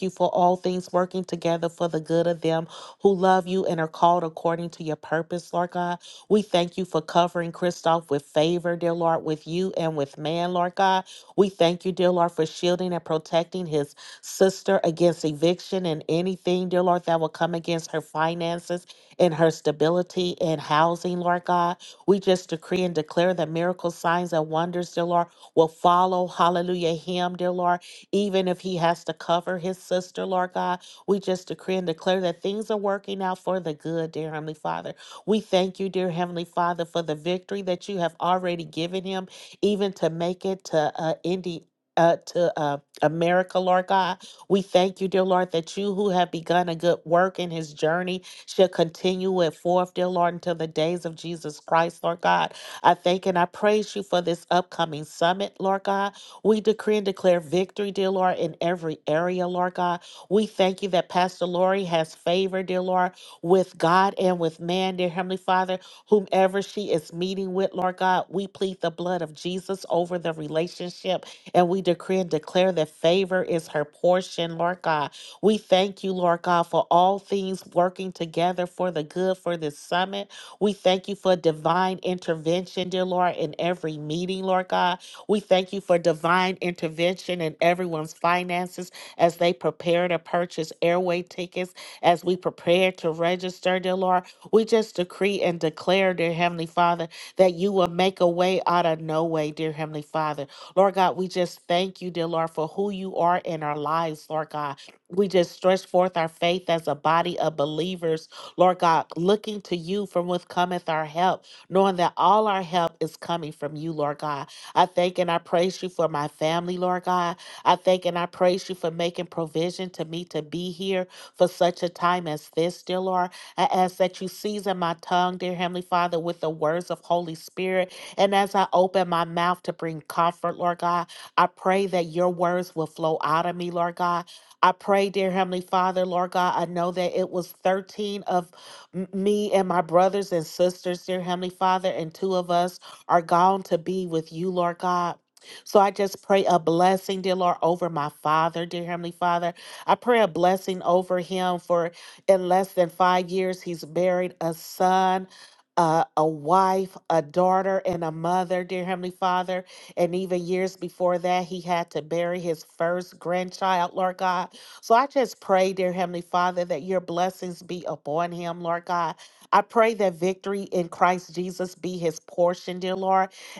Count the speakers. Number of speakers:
1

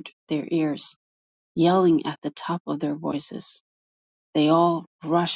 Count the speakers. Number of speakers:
1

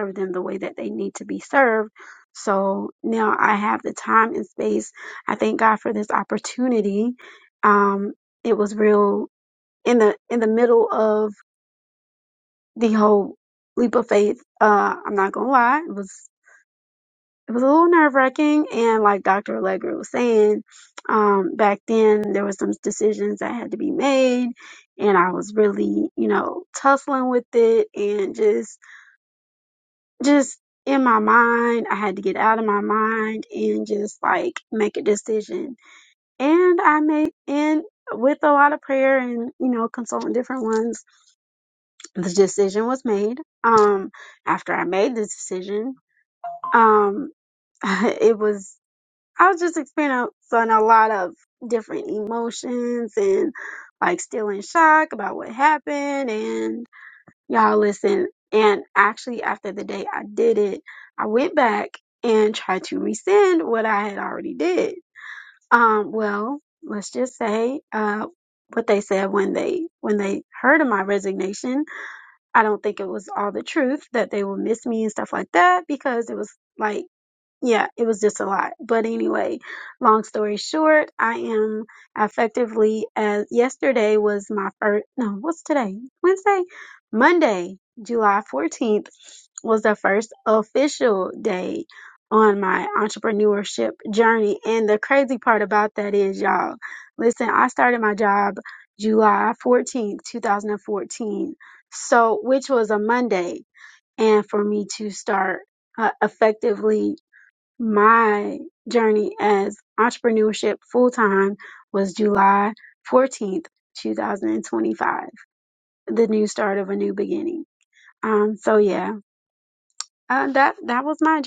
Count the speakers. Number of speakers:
1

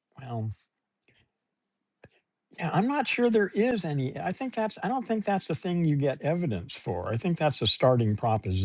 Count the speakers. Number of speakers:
1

